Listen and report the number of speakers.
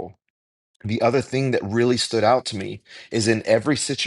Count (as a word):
one